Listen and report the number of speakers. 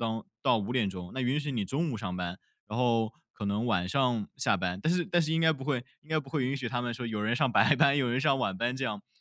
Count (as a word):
one